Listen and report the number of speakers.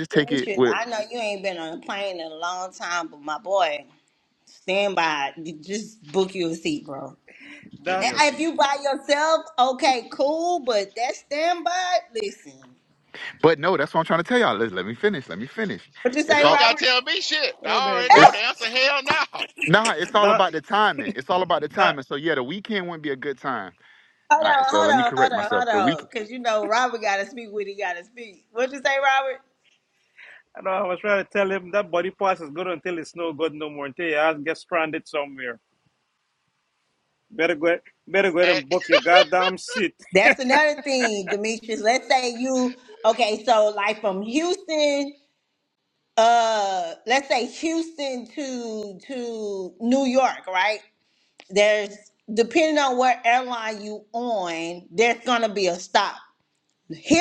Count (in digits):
4